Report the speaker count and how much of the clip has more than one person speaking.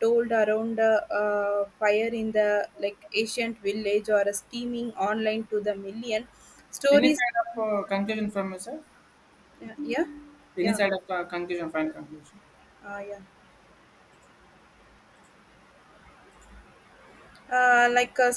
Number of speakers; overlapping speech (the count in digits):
2, about 2%